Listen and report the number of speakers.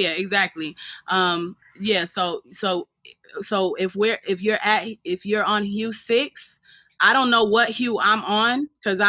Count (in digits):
1